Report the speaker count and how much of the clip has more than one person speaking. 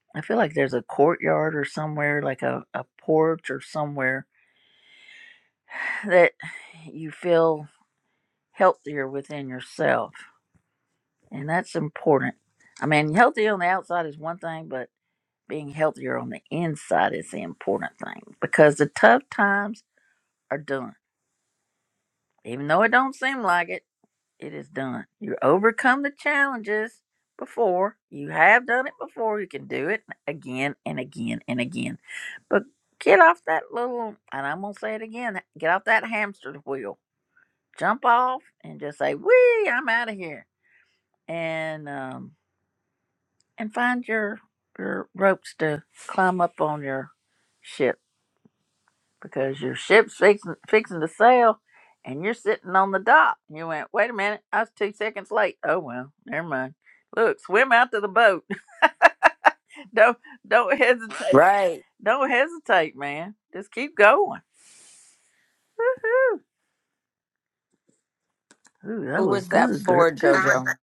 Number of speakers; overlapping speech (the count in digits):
2, about 2%